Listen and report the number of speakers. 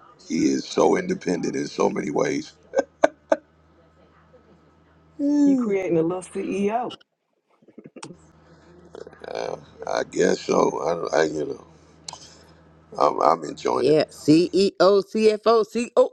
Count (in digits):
3